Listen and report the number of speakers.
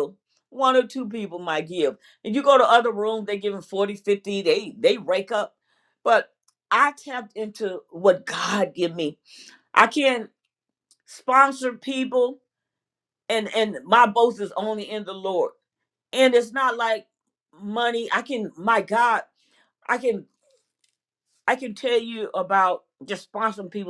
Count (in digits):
1